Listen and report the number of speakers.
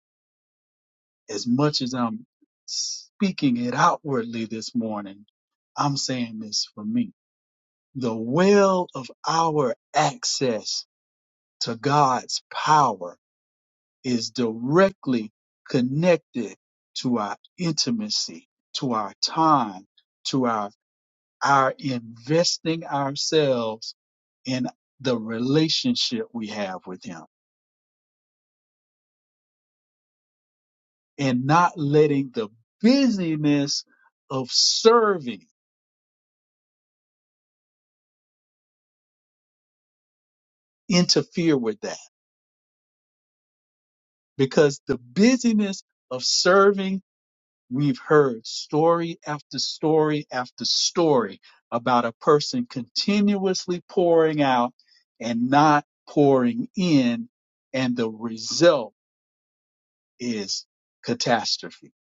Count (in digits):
1